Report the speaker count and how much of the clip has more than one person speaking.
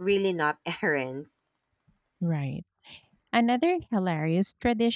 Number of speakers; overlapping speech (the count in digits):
2, no overlap